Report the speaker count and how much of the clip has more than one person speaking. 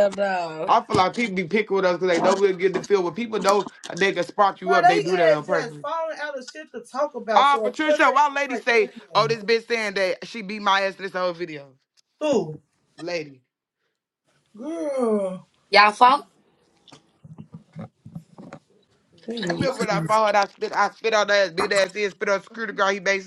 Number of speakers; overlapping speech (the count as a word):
three, about 15%